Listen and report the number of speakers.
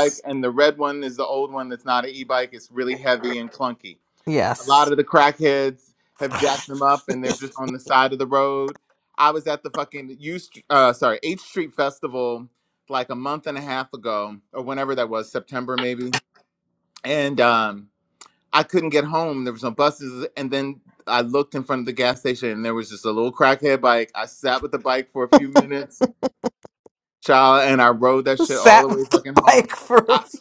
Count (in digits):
2